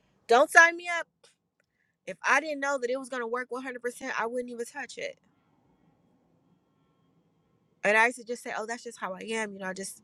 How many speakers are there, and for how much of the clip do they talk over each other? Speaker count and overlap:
1, no overlap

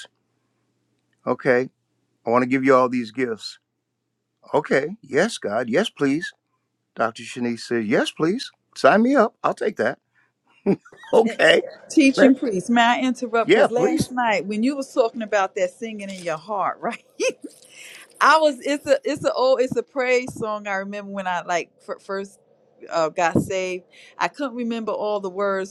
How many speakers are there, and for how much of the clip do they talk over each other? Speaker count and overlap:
2, about 3%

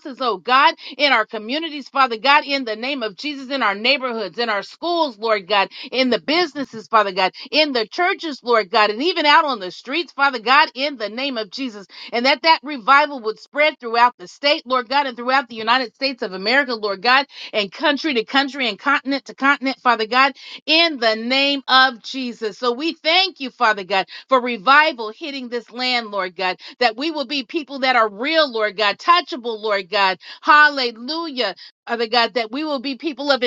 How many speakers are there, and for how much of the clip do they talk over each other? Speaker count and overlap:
1, no overlap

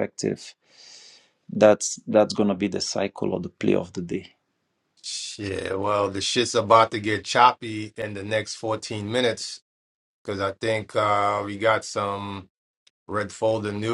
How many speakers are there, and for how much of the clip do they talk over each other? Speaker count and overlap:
2, no overlap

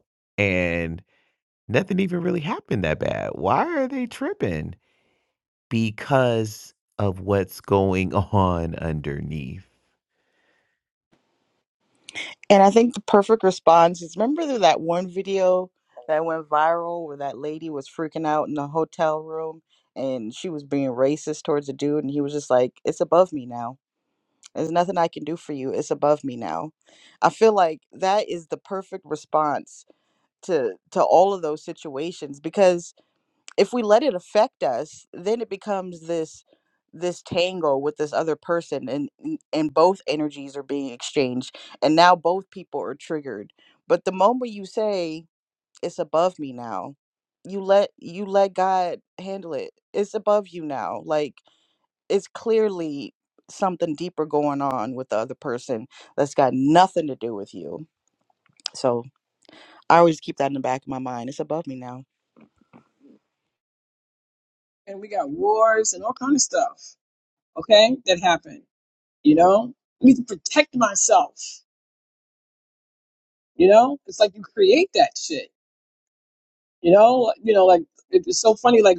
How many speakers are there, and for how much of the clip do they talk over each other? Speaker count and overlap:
3, no overlap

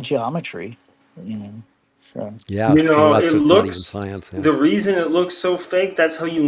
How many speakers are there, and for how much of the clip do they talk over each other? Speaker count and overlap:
3, about 20%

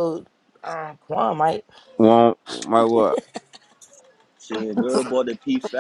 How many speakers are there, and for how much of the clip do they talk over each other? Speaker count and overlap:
3, no overlap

